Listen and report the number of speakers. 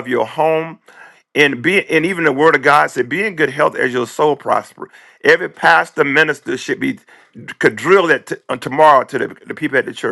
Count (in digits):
1